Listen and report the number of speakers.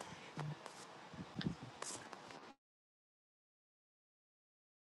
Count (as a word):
zero